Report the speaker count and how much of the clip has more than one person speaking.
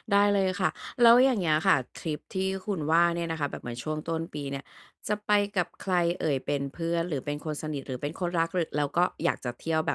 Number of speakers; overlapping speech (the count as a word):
one, no overlap